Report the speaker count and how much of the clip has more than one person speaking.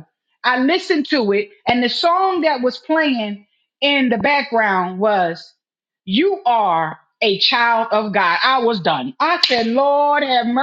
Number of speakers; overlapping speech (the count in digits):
1, no overlap